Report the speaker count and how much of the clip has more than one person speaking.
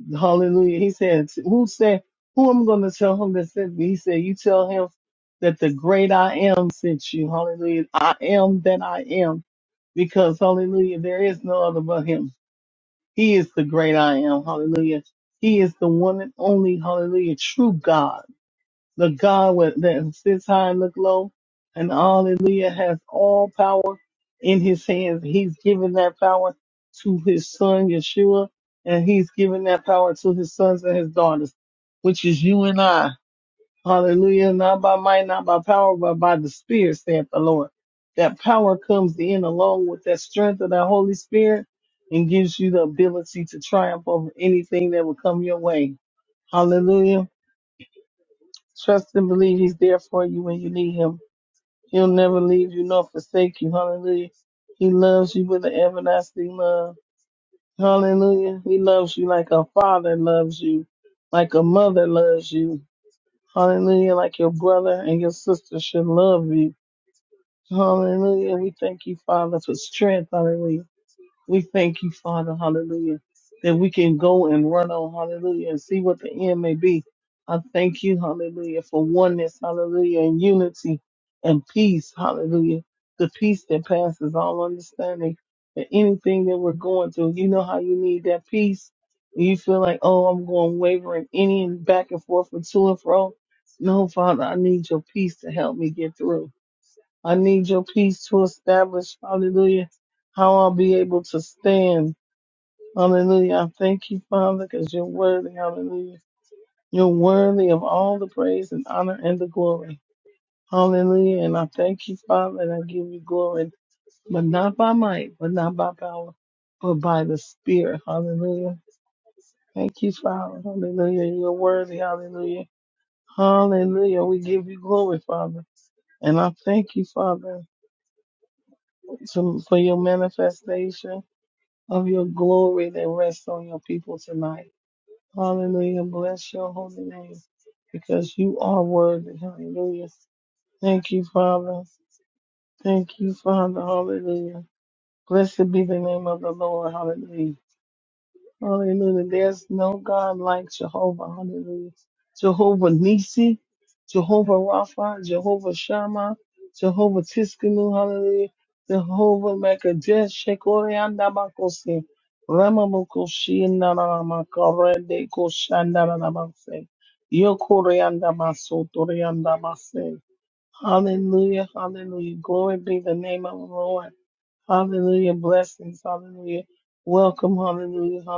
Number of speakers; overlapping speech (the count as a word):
one, no overlap